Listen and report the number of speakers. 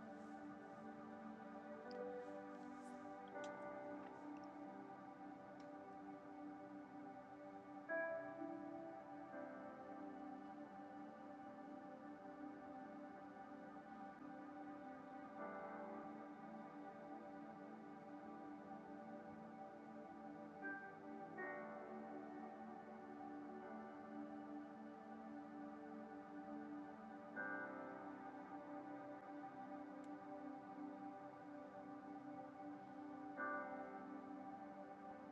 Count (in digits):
0